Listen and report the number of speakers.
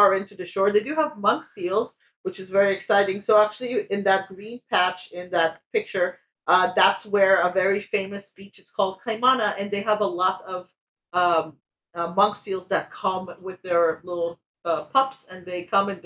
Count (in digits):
1